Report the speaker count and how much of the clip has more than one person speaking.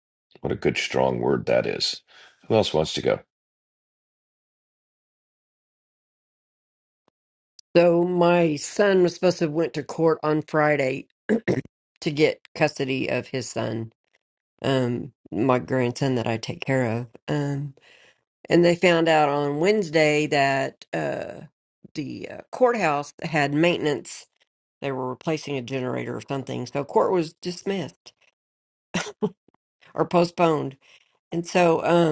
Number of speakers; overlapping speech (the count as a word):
two, no overlap